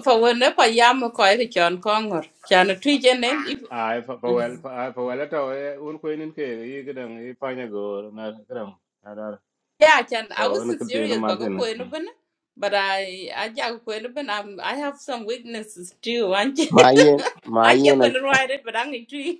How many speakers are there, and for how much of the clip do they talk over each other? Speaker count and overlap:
3, about 9%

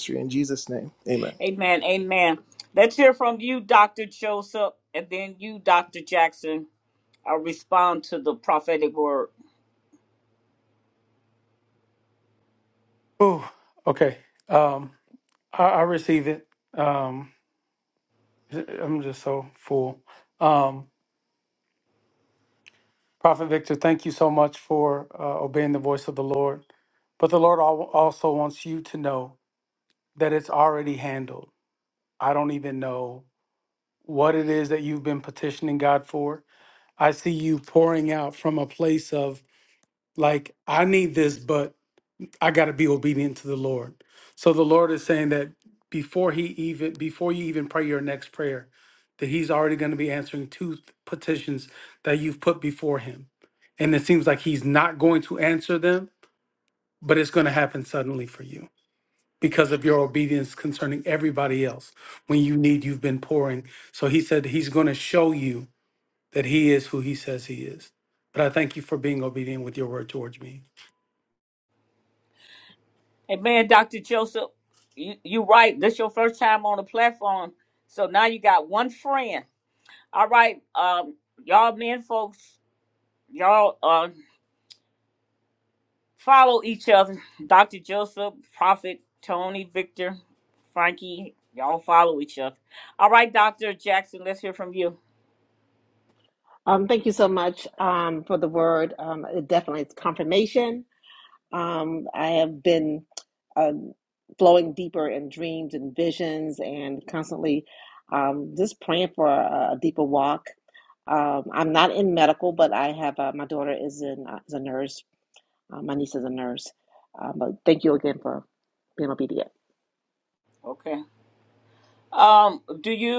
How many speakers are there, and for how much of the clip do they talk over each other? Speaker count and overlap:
4, no overlap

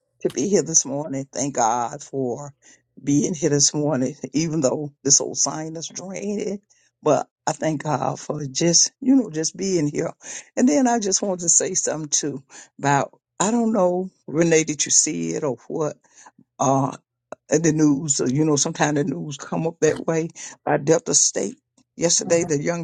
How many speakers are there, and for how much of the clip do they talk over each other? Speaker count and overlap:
1, no overlap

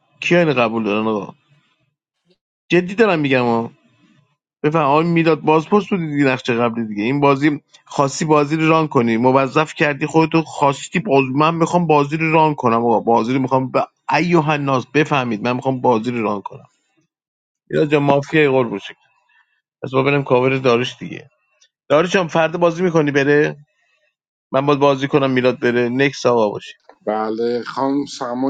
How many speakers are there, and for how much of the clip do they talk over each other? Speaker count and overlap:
2, no overlap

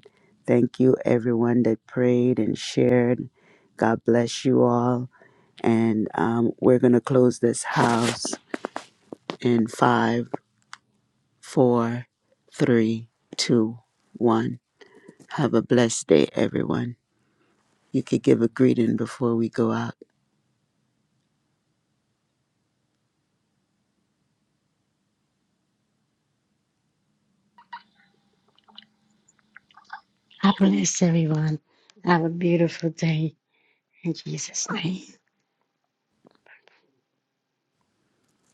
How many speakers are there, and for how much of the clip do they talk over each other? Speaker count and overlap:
2, no overlap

